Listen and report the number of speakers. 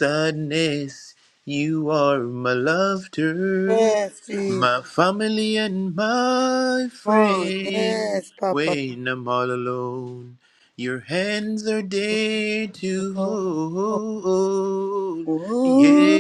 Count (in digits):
2